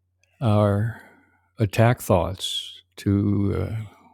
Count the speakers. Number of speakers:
one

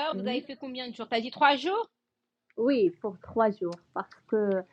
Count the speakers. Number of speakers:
two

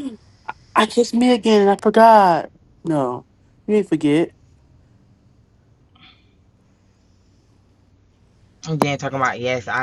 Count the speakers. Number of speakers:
two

